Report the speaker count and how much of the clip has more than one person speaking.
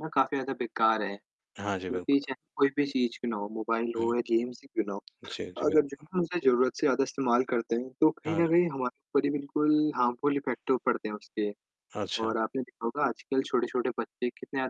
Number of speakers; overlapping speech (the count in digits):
2, about 7%